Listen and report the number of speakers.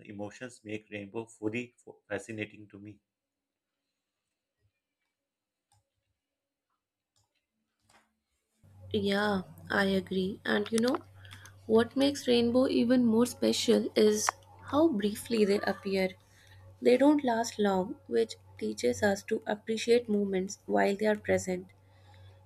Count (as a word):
two